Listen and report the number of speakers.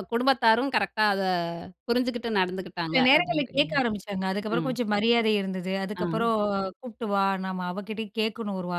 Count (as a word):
two